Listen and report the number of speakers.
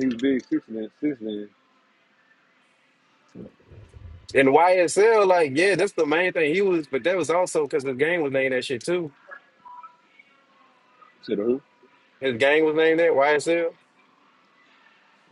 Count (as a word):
two